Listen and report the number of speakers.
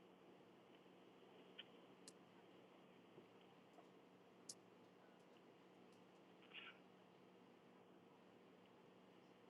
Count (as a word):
zero